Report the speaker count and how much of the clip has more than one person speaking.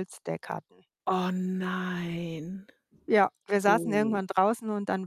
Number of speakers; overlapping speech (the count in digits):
2, about 11%